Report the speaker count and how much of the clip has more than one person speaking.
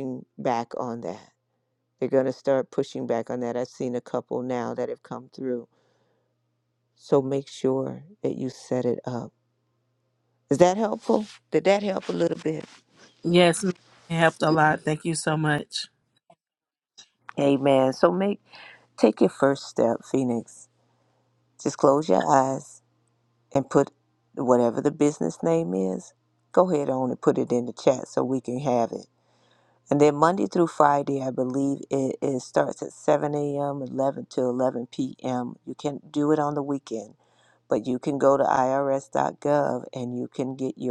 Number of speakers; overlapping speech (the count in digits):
2, no overlap